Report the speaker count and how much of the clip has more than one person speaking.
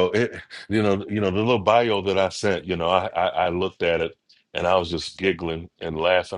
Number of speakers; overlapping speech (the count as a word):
one, no overlap